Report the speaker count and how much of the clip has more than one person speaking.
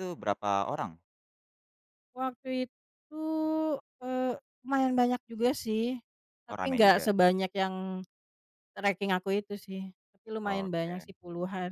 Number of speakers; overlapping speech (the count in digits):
2, about 11%